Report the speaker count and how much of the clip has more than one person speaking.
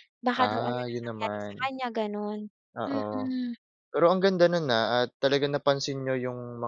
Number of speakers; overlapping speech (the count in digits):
2, about 25%